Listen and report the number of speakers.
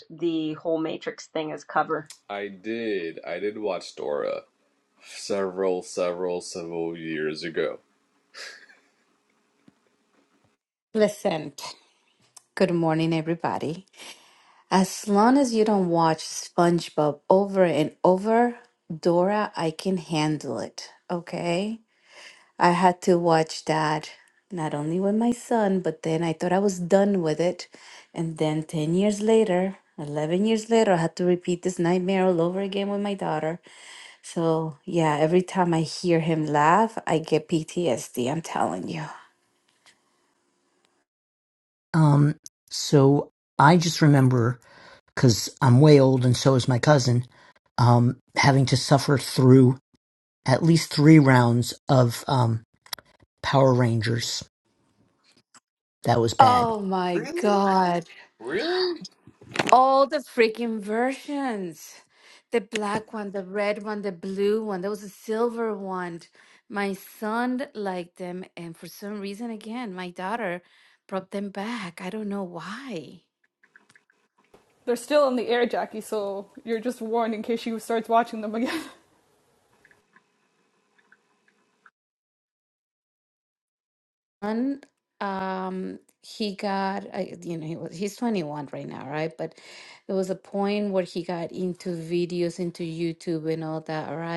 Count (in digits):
5